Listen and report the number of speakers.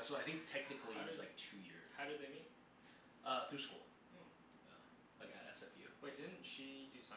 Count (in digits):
2